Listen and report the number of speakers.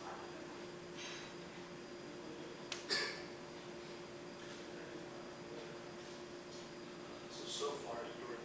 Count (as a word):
one